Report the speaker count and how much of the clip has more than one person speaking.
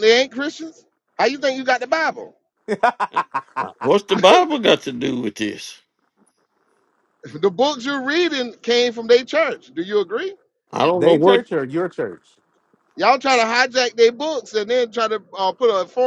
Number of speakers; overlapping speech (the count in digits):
3, about 3%